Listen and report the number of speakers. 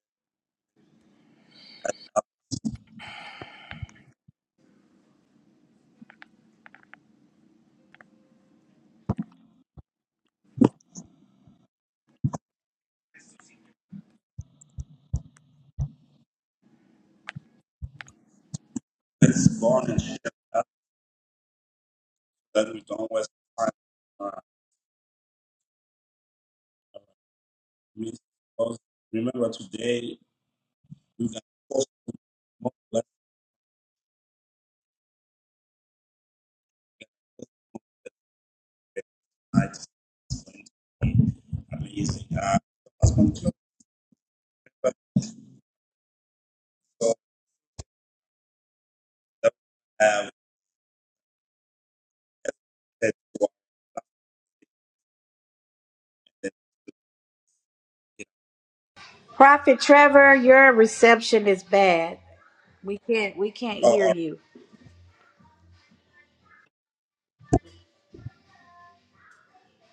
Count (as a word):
two